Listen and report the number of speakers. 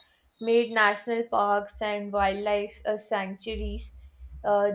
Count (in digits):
1